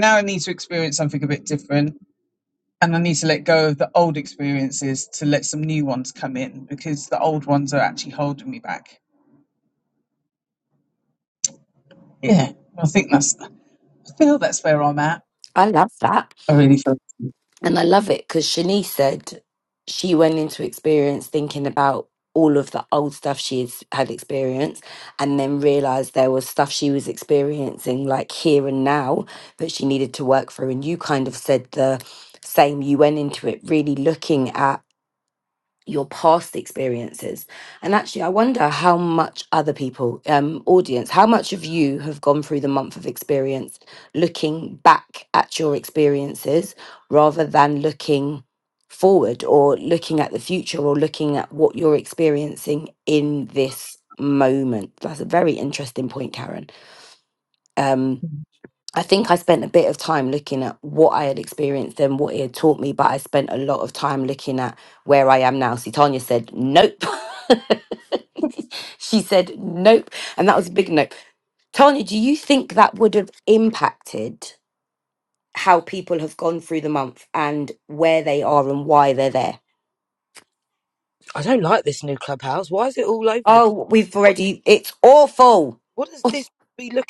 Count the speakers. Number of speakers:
three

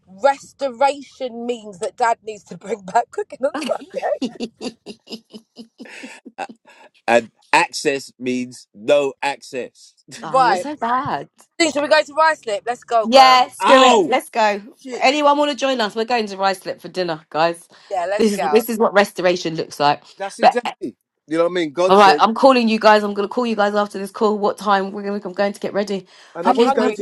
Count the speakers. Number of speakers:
three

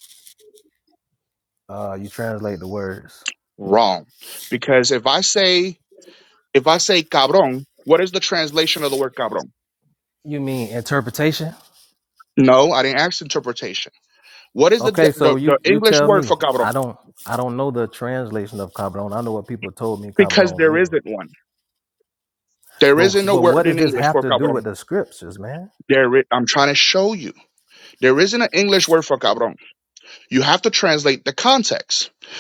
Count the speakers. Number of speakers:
two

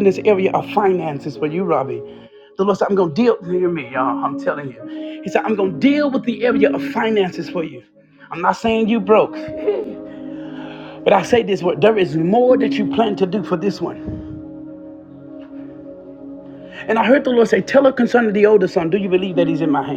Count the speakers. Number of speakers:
one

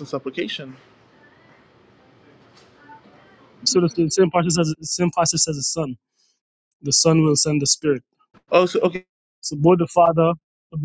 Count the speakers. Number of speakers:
two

